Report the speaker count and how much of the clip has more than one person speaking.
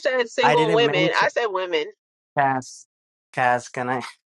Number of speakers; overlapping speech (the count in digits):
2, about 20%